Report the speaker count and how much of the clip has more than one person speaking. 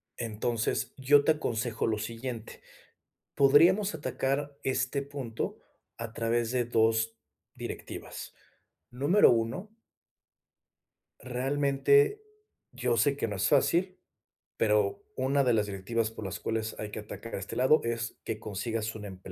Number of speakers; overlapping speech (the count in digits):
1, no overlap